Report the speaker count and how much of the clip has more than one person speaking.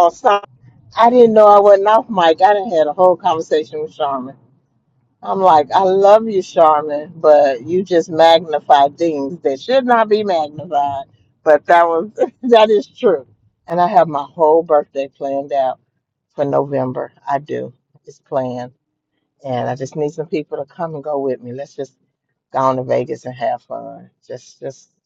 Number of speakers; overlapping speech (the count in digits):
1, no overlap